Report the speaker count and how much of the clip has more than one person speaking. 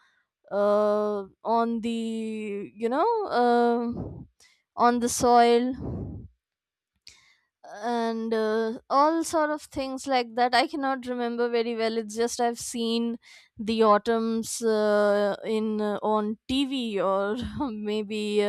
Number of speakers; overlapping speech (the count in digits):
1, no overlap